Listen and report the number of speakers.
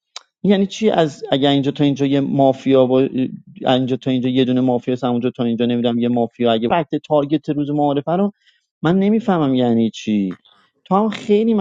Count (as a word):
one